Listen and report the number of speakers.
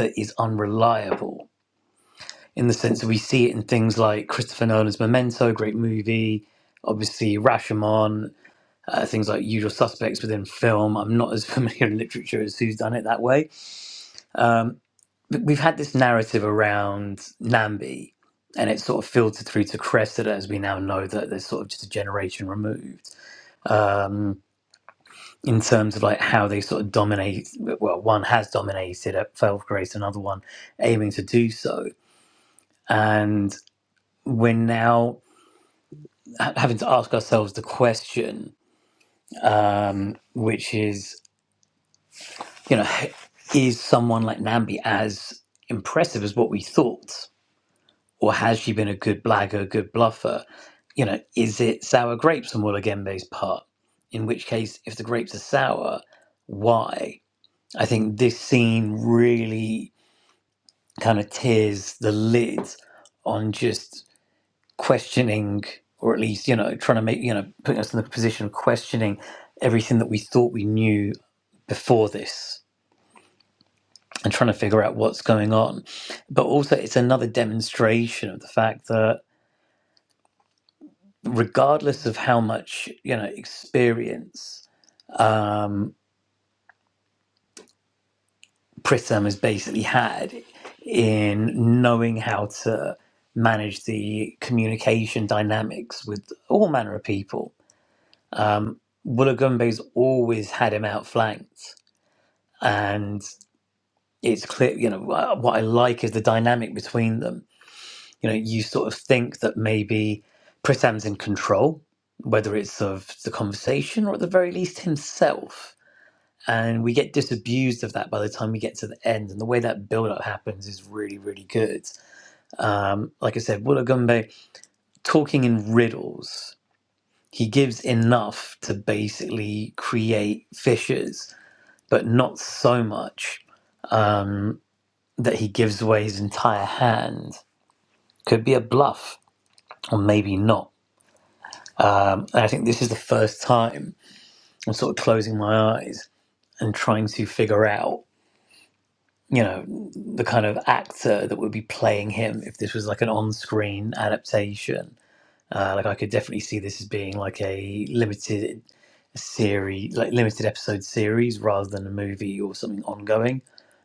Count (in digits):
1